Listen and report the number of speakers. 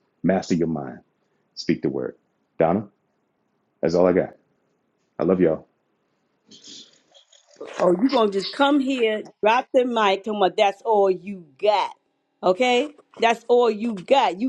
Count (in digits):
2